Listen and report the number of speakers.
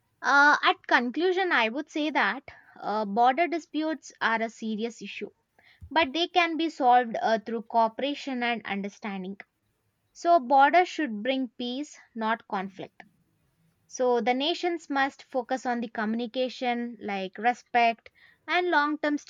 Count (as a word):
one